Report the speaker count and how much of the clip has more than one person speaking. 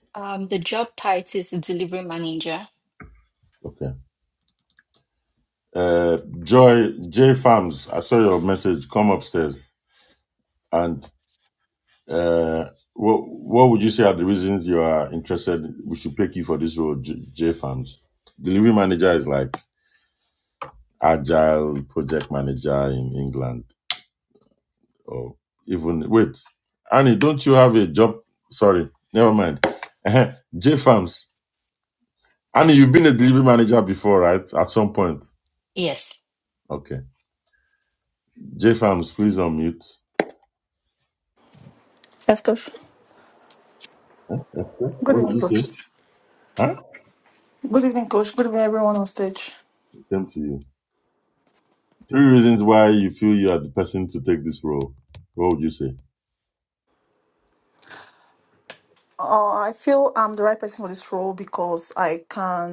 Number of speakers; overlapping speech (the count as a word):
three, about 1%